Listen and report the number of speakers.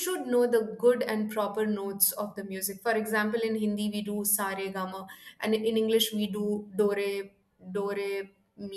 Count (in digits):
1